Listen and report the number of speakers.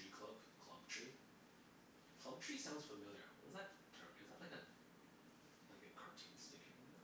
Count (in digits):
1